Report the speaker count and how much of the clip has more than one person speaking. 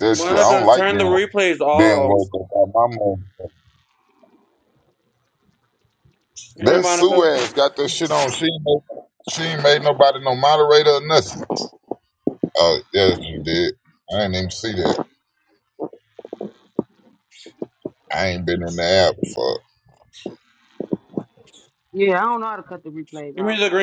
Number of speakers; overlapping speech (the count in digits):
3, about 11%